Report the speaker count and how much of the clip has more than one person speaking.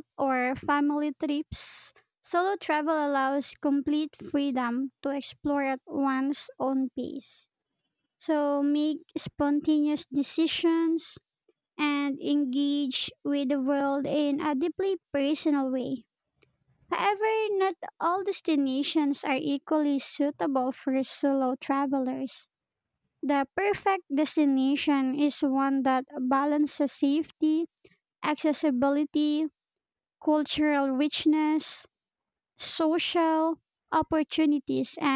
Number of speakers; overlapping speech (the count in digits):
1, no overlap